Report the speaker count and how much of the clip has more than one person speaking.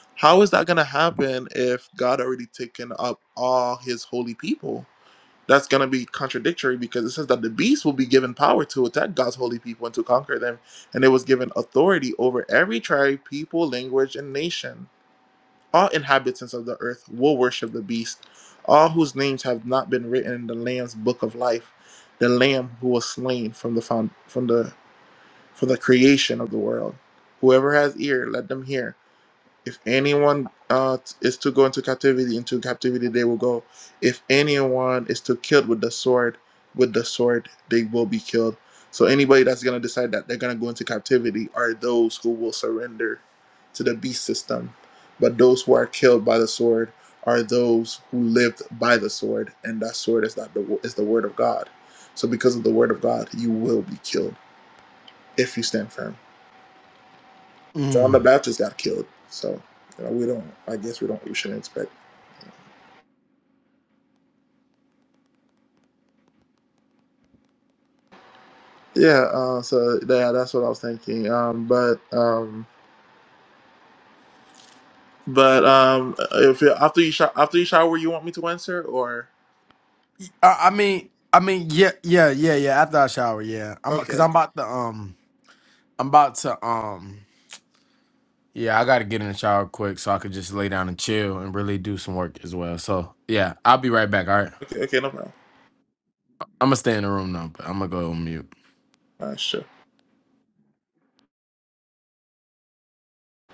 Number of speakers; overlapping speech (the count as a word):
two, about 1%